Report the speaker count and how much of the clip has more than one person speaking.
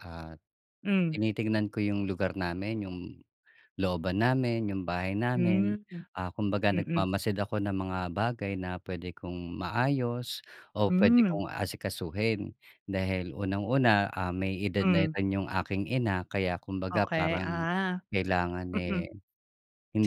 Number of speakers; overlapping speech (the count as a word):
two, about 14%